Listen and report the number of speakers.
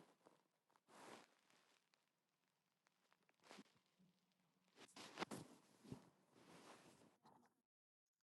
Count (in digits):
0